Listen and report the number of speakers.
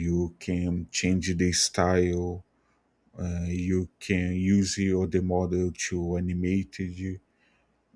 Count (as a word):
one